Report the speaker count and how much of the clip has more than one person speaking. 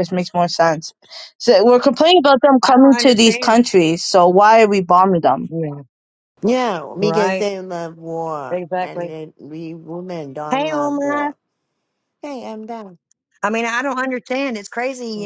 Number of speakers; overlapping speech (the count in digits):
3, about 19%